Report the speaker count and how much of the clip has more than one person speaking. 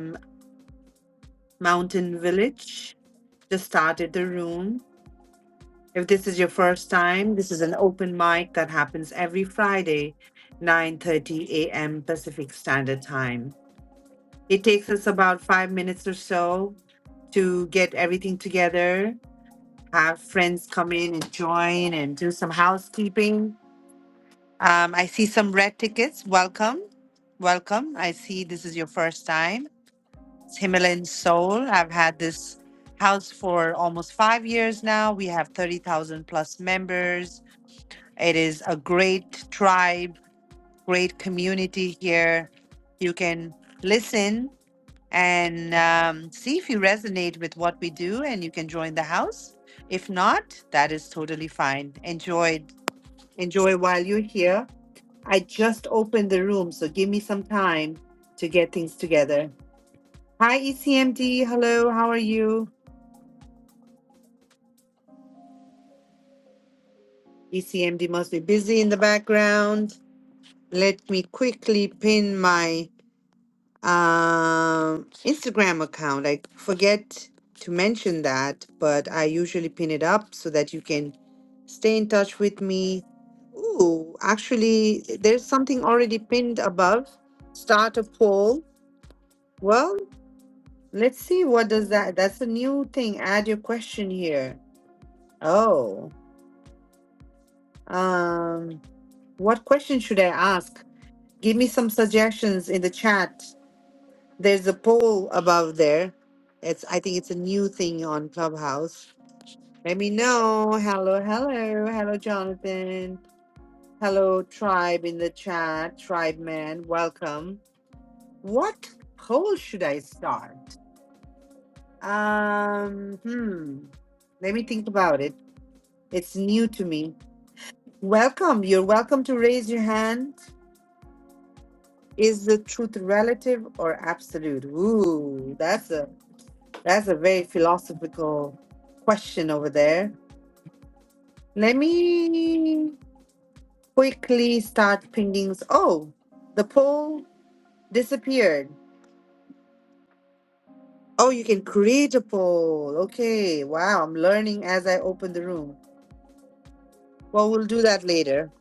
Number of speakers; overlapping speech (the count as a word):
one, no overlap